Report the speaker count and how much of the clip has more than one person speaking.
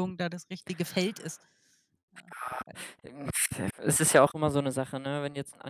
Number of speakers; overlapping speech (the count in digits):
2, no overlap